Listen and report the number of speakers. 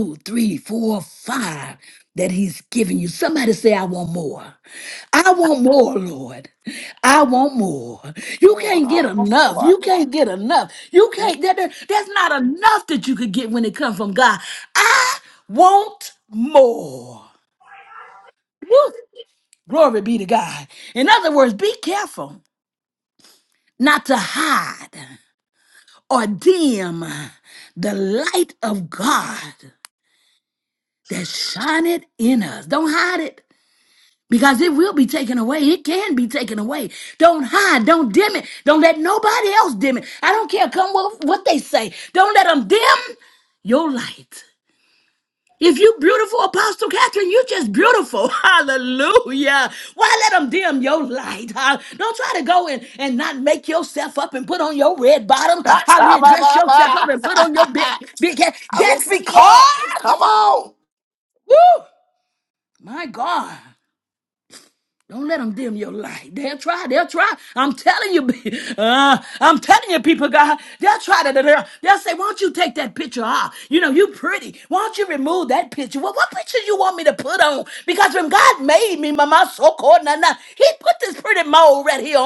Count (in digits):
2